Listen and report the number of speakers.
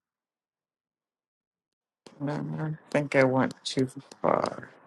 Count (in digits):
1